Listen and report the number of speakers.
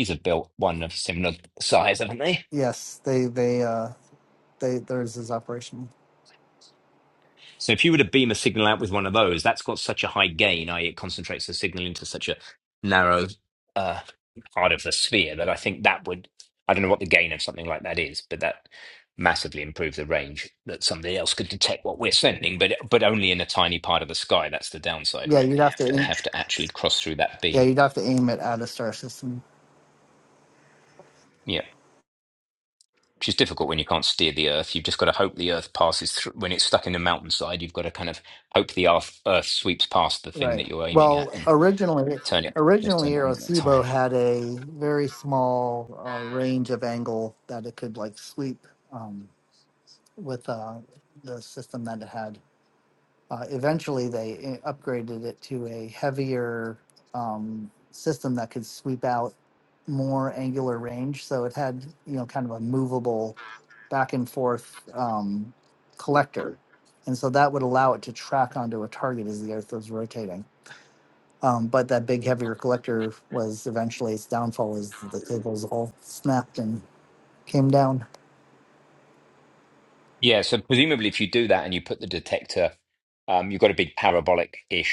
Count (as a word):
two